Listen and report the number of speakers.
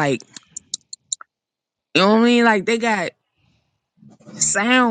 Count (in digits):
1